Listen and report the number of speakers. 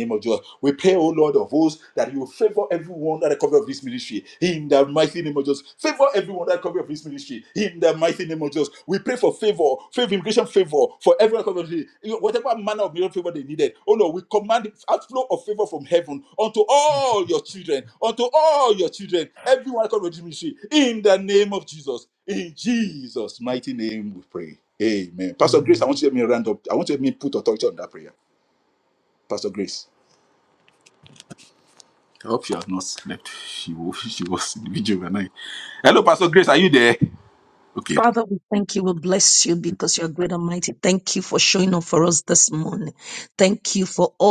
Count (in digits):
2